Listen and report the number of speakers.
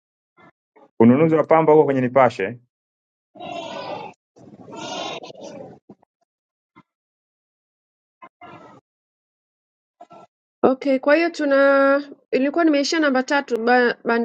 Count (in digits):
2